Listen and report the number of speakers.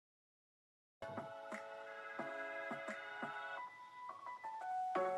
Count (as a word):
zero